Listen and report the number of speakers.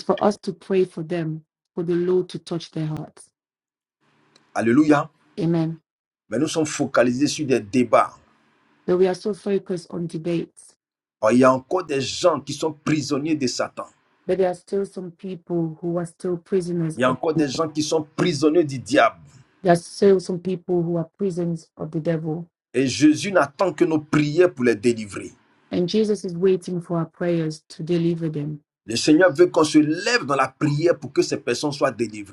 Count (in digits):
2